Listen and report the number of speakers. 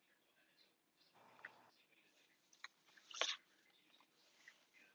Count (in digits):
0